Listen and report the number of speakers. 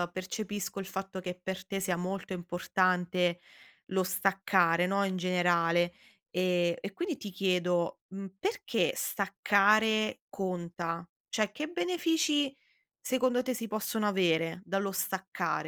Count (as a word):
one